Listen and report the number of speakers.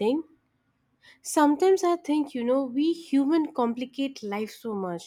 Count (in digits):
1